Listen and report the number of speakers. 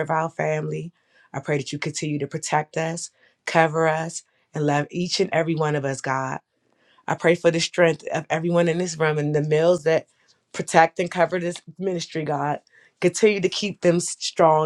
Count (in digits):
1